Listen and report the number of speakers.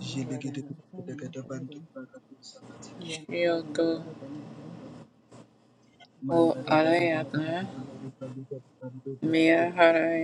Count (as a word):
three